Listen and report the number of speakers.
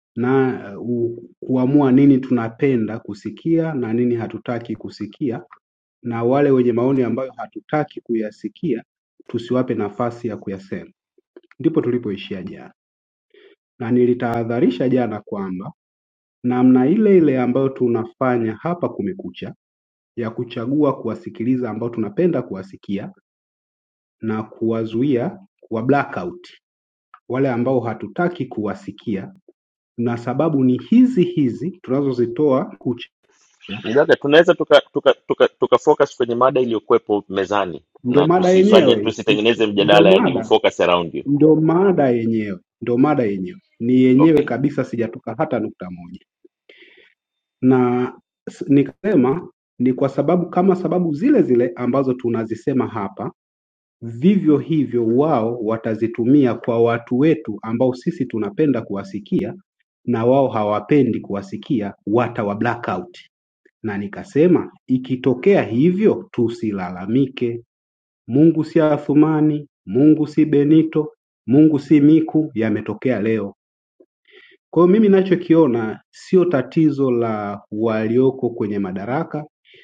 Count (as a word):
two